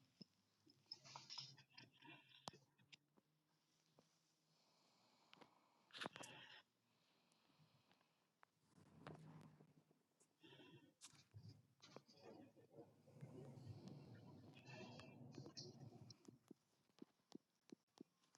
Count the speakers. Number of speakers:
0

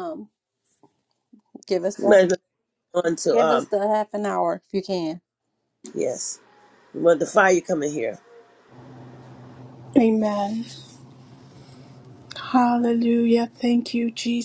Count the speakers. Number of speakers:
3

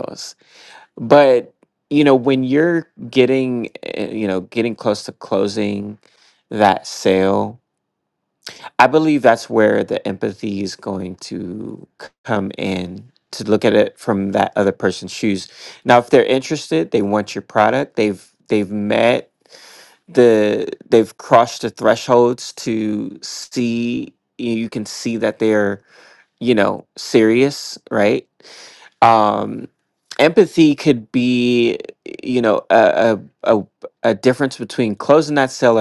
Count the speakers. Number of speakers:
1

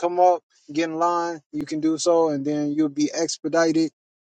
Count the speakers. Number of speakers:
1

